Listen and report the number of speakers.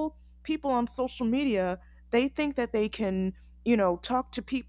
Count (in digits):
1